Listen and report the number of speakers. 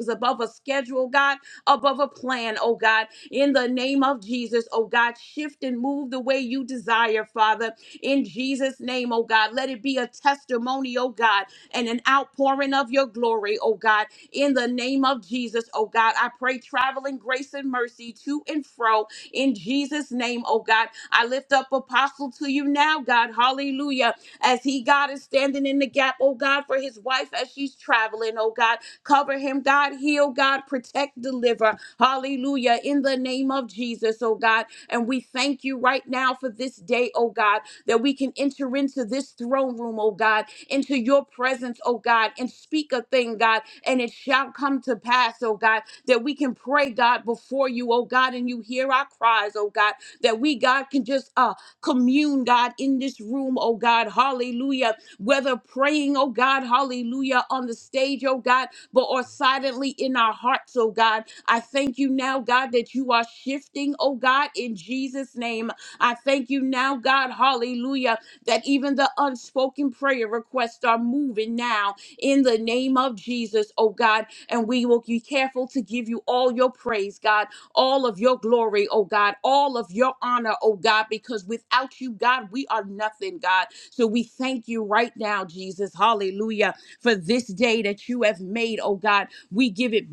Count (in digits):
1